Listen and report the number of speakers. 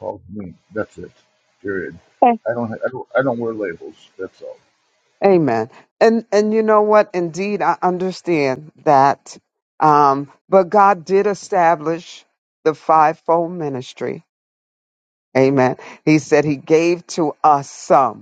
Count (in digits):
2